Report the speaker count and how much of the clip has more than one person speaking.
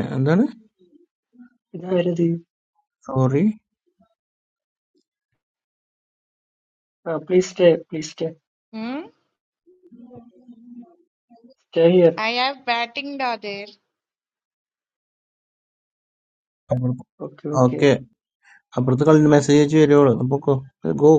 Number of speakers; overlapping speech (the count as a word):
three, about 1%